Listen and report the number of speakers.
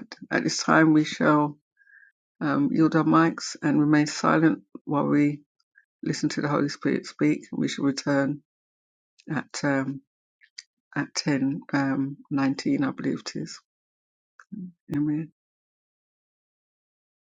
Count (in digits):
1